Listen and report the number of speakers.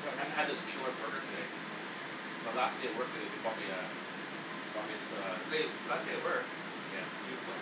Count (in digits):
2